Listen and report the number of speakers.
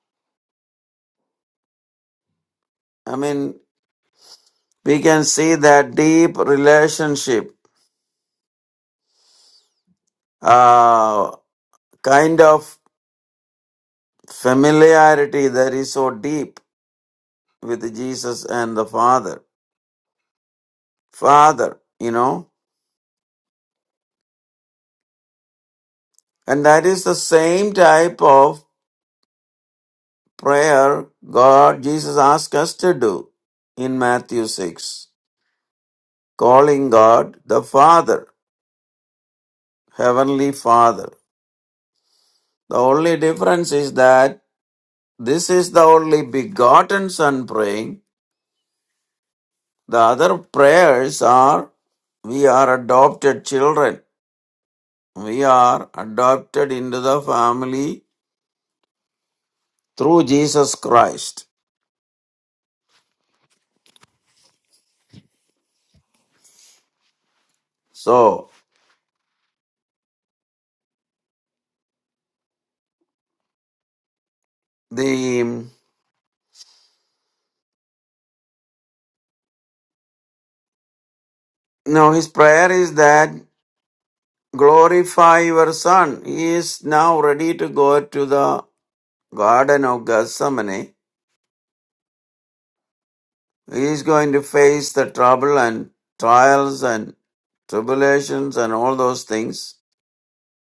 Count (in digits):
1